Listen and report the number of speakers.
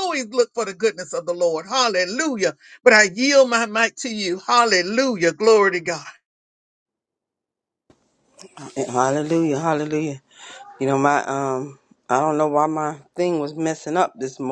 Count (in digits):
2